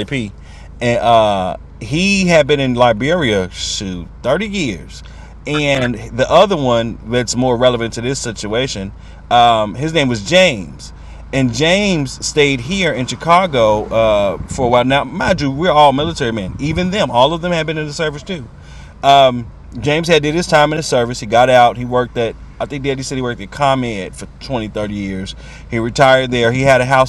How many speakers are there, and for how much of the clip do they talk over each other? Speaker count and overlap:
one, no overlap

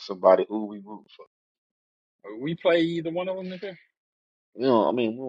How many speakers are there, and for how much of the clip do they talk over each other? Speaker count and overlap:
two, no overlap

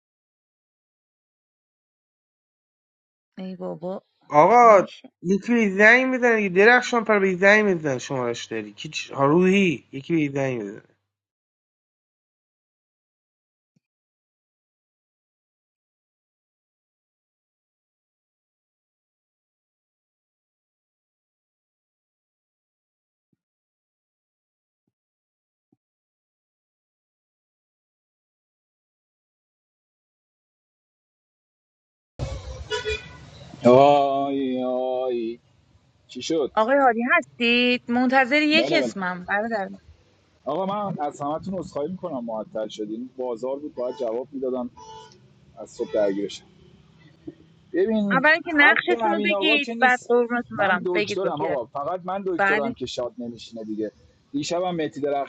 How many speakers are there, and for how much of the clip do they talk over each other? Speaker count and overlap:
three, about 7%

